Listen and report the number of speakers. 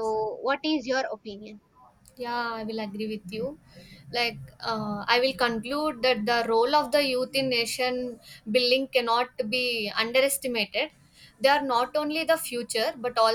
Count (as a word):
two